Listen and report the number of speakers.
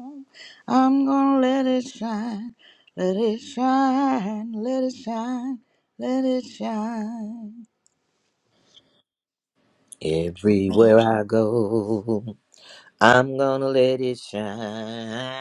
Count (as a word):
two